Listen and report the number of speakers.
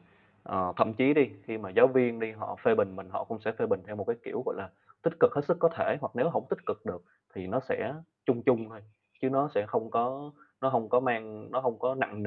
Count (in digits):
1